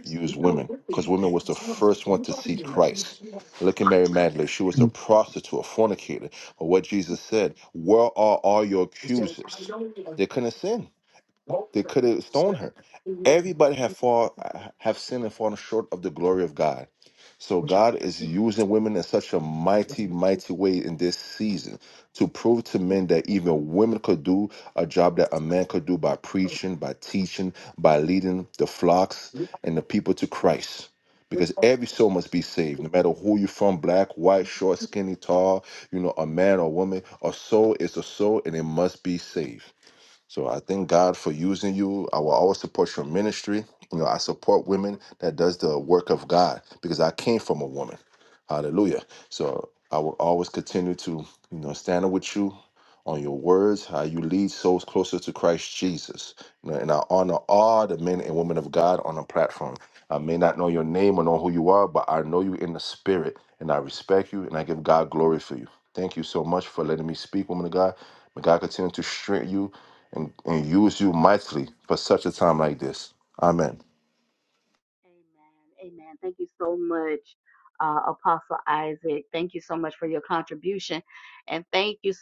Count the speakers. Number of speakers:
3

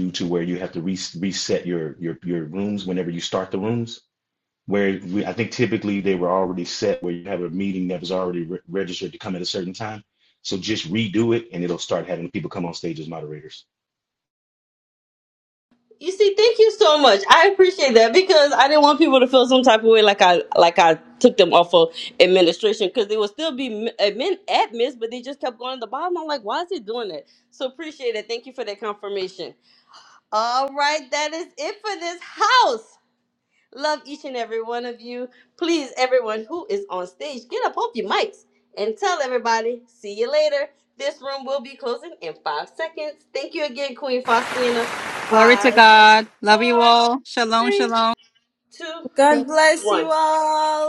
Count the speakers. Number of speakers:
4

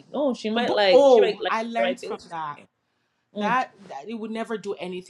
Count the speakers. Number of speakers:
2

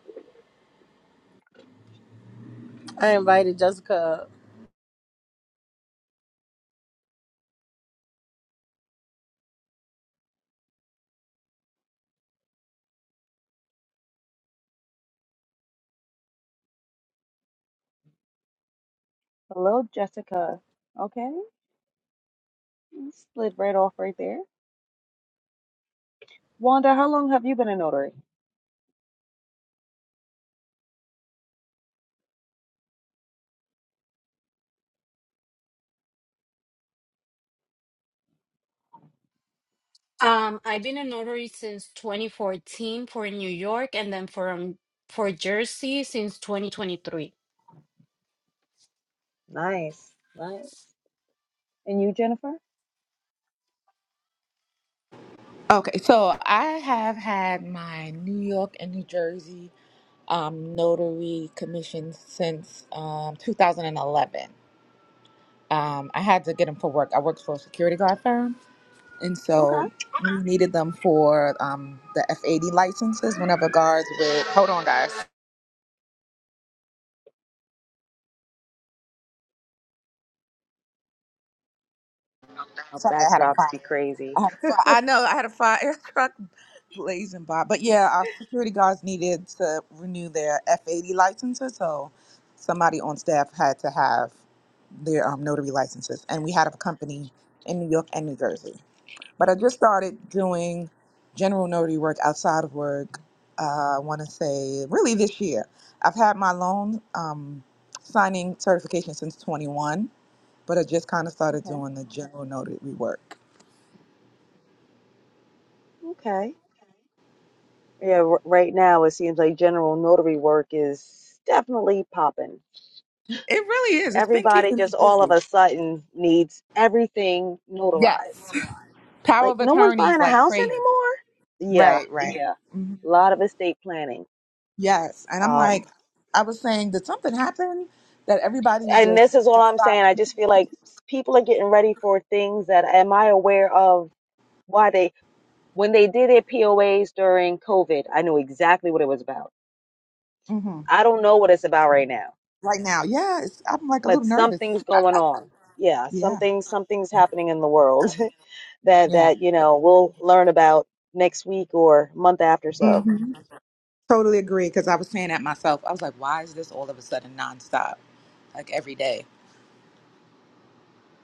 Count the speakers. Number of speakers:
4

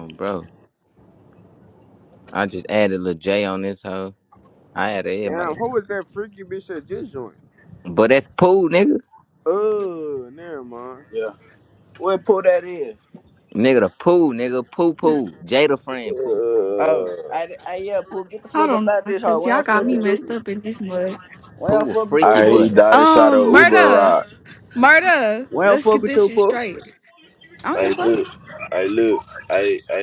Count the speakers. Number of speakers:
5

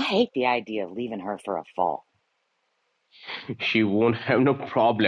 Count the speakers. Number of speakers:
2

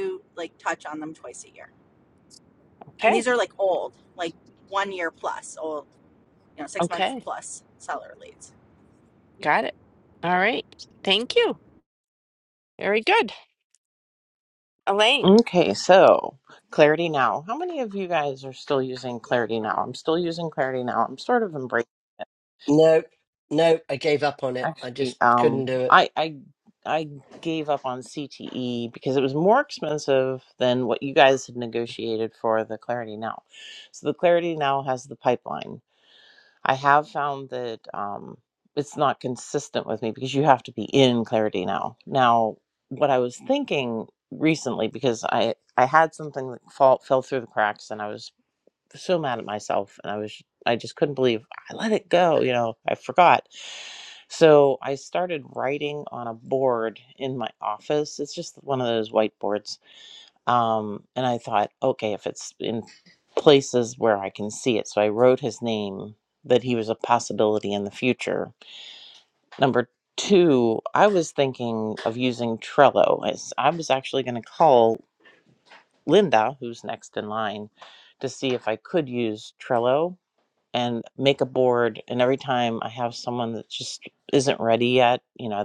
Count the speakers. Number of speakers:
4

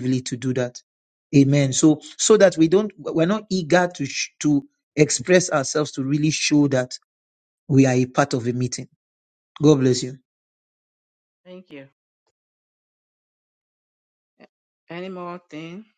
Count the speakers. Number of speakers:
2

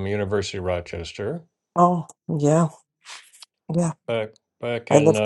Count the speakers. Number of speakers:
2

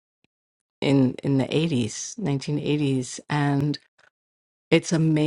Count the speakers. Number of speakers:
1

